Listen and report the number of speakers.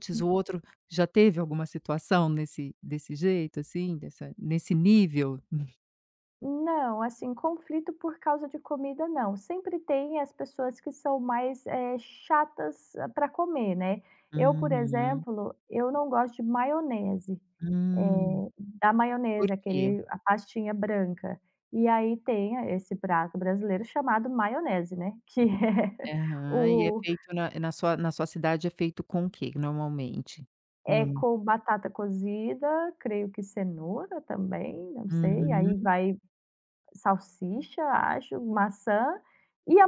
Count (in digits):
2